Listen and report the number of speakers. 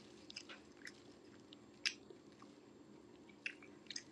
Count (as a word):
zero